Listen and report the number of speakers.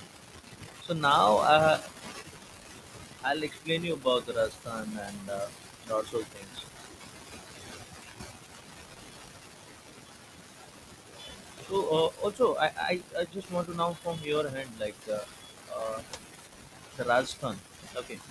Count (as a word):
one